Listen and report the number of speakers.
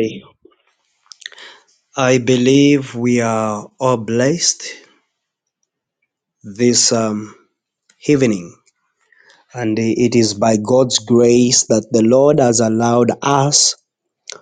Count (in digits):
1